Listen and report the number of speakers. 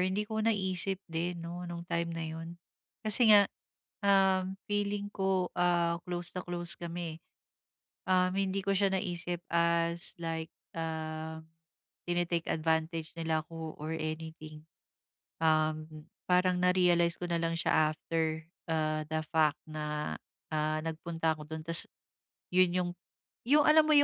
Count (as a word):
one